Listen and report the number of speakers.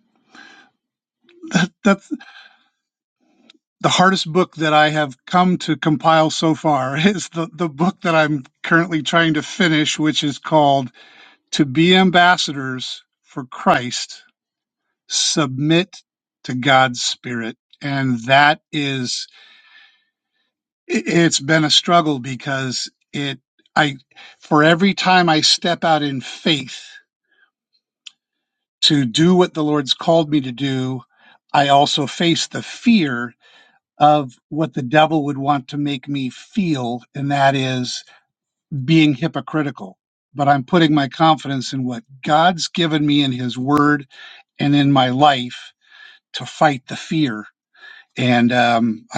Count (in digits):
1